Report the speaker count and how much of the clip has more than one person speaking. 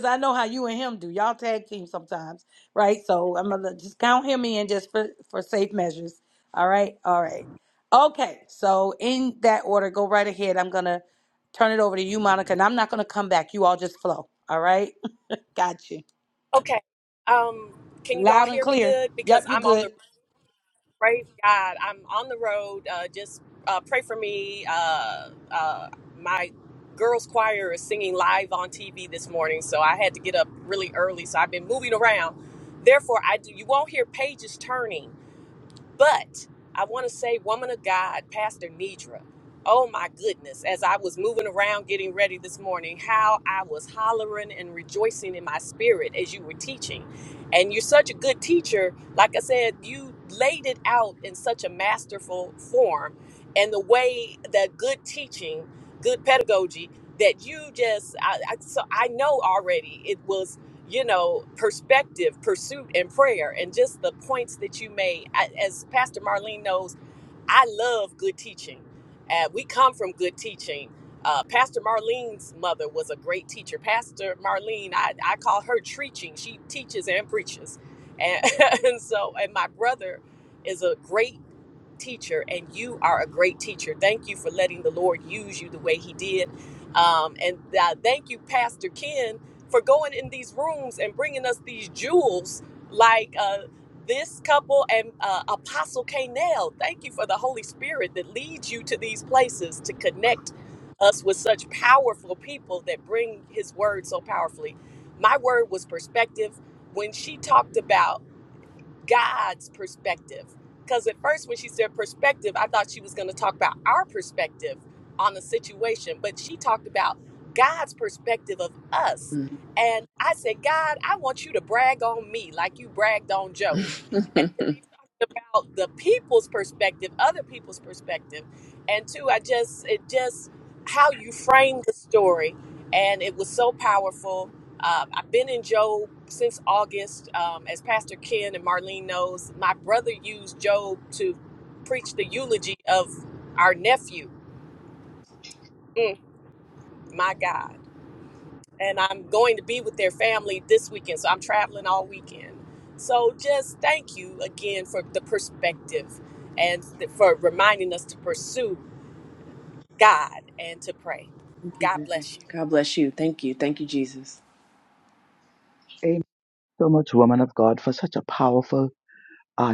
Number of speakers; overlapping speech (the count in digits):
4, about 1%